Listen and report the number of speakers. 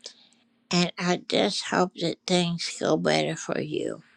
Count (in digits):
1